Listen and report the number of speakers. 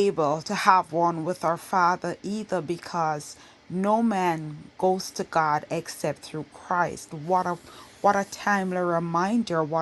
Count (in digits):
1